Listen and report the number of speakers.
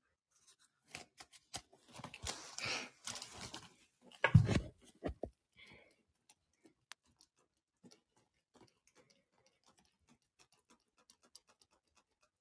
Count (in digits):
0